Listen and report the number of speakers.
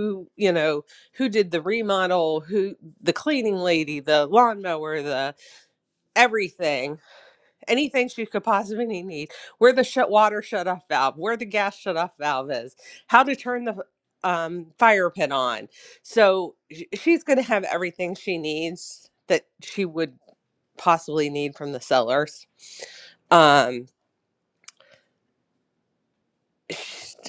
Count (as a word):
one